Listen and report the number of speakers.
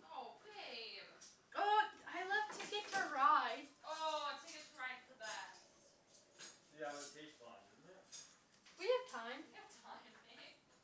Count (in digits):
3